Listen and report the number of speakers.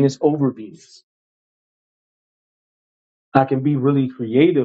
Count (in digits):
1